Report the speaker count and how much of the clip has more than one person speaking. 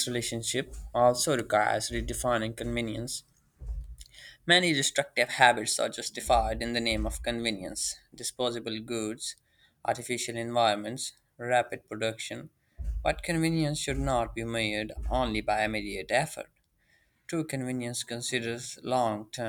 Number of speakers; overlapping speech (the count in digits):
1, no overlap